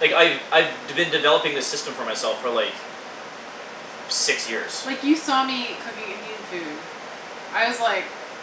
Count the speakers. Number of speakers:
2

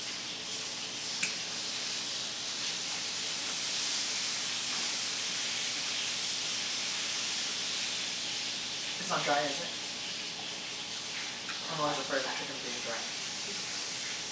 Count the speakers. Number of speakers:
1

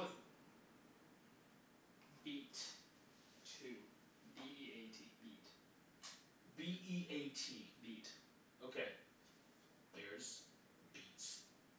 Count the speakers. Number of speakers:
2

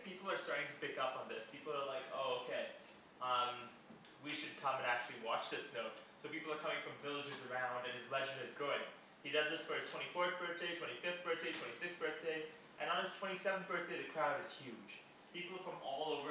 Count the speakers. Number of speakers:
1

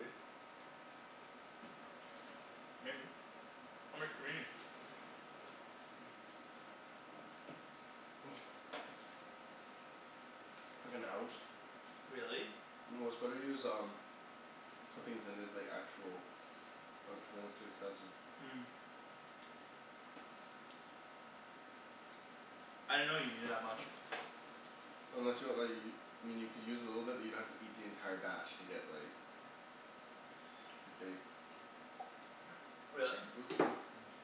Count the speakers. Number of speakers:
2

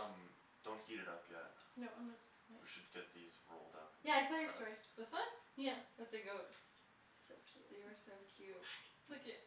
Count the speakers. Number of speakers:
3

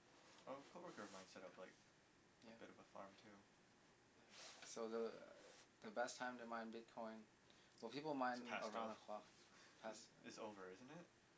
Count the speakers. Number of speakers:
2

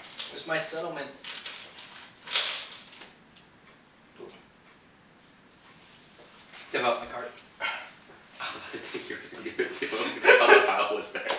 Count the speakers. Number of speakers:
2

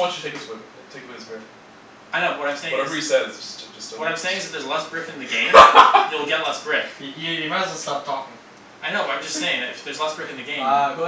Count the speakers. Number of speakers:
3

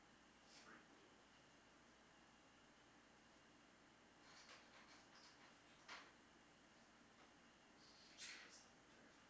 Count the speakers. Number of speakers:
1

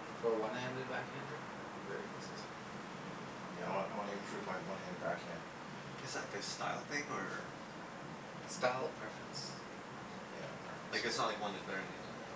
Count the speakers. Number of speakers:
3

